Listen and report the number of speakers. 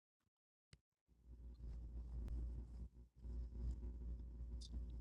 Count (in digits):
0